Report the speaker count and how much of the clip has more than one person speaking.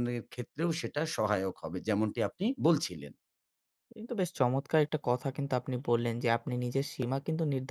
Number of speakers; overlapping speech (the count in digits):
2, no overlap